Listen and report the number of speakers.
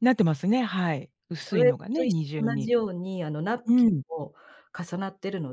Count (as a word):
two